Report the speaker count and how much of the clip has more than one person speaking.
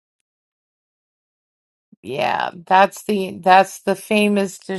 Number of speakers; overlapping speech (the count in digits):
1, no overlap